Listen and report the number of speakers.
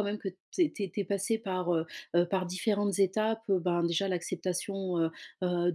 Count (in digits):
1